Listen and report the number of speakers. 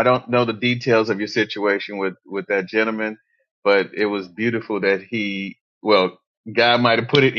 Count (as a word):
one